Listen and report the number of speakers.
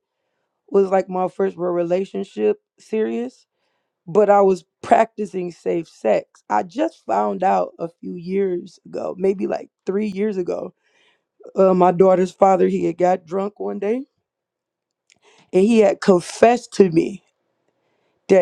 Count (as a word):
one